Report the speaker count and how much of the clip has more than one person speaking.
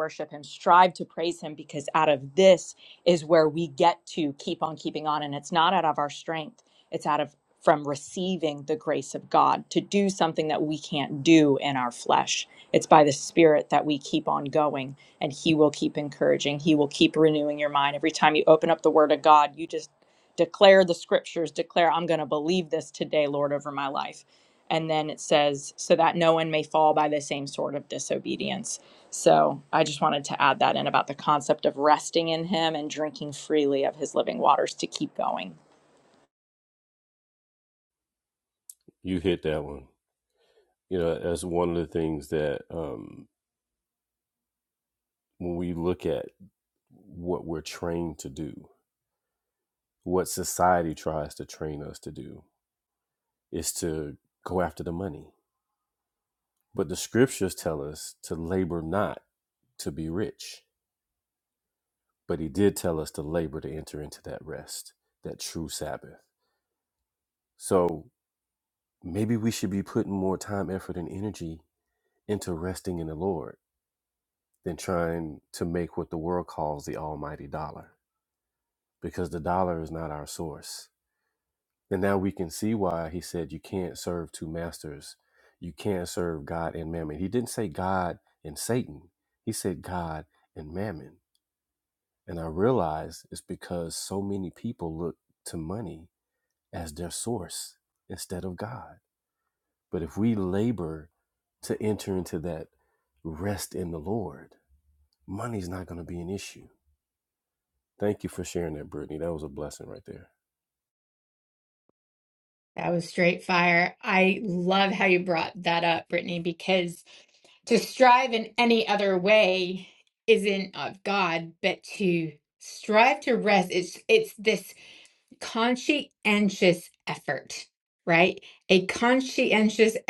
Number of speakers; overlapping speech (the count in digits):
3, no overlap